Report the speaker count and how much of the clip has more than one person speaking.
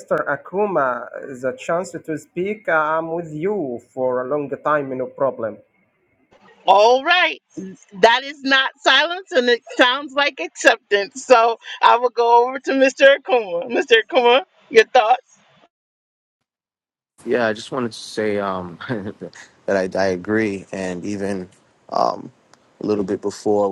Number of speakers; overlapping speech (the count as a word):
three, no overlap